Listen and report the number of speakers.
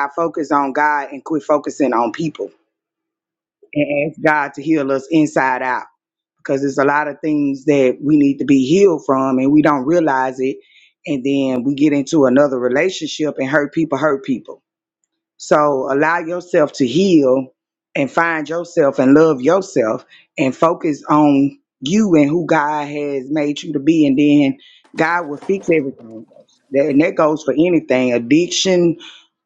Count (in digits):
1